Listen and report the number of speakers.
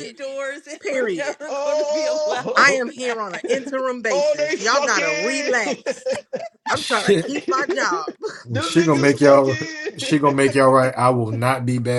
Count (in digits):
4